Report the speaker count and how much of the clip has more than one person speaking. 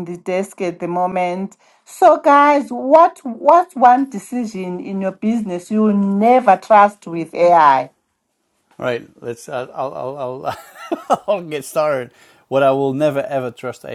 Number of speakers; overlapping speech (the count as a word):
two, no overlap